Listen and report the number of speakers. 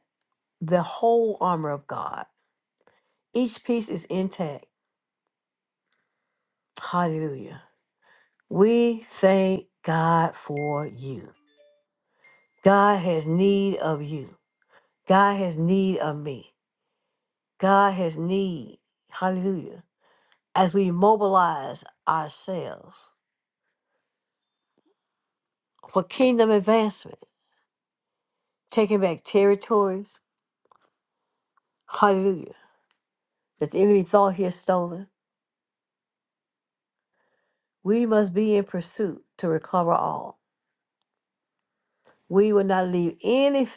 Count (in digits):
1